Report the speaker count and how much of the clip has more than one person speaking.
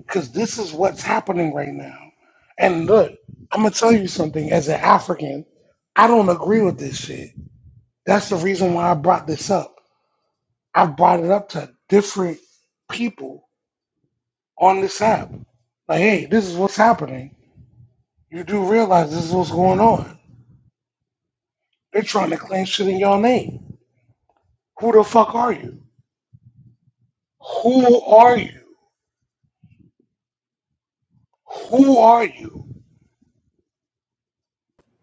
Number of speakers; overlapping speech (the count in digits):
1, no overlap